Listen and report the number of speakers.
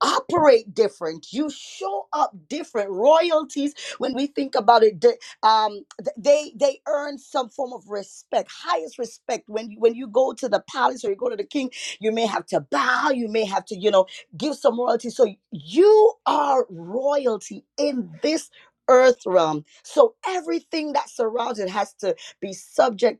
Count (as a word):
one